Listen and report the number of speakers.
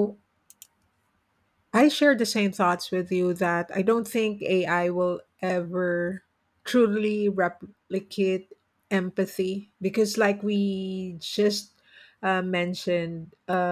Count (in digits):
1